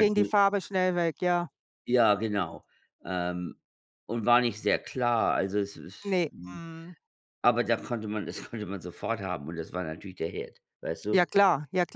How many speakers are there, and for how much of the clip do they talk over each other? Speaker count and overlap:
2, about 8%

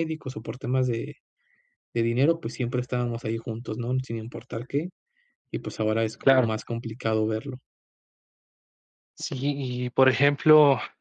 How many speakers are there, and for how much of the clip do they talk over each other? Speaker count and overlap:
2, about 2%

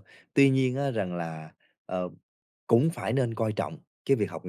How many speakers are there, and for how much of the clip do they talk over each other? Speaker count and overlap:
1, no overlap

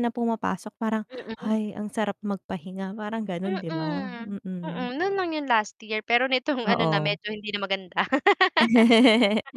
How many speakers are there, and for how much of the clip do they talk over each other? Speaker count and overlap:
2, about 18%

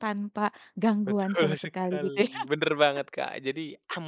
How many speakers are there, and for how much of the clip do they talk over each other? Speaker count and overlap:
2, about 32%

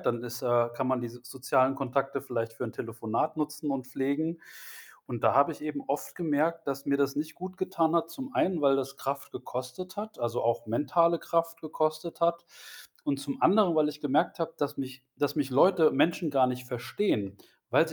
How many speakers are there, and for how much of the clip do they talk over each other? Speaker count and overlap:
1, no overlap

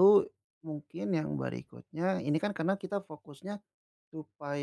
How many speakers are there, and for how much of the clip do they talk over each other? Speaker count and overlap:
1, no overlap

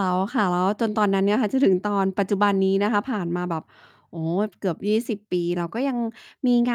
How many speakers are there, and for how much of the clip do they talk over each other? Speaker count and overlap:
1, no overlap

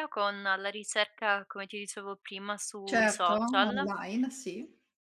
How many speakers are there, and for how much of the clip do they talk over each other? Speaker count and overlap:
2, about 20%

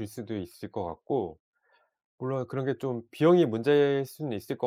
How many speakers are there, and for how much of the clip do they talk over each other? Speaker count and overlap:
1, no overlap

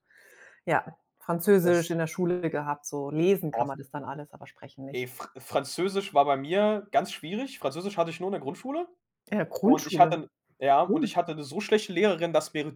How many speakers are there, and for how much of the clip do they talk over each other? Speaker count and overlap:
2, about 8%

